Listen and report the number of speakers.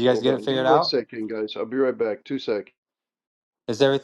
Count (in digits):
2